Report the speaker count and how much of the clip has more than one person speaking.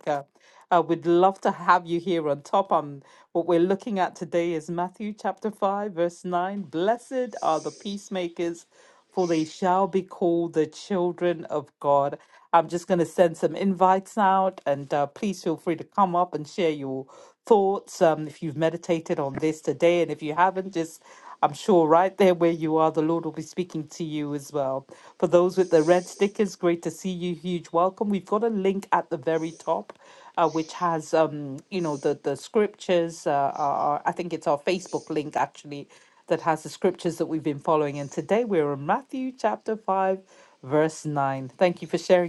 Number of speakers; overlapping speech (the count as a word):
one, no overlap